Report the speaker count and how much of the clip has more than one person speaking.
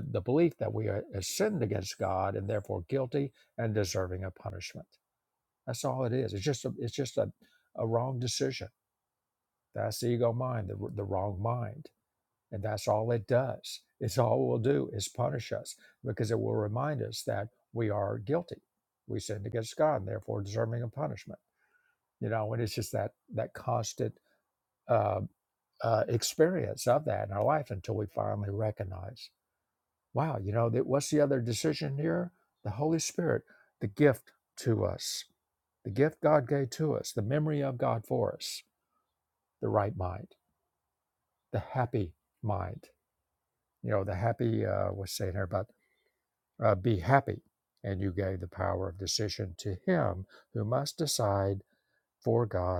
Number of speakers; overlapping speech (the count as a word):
one, no overlap